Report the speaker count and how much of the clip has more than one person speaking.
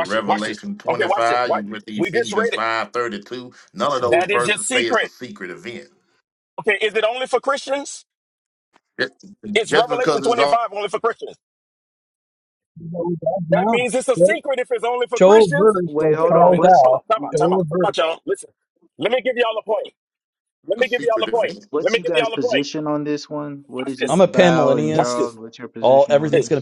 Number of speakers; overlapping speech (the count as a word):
four, about 41%